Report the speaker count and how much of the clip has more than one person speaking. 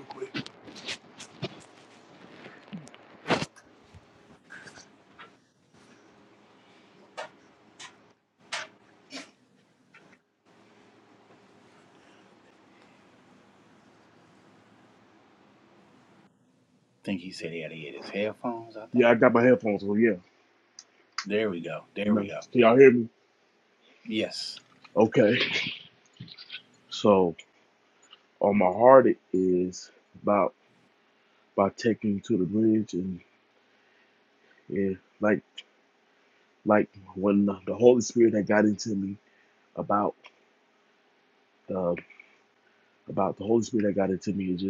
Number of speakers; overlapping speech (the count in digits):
2, about 1%